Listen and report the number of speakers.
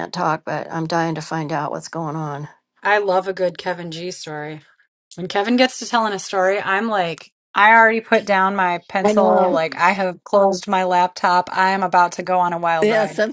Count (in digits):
2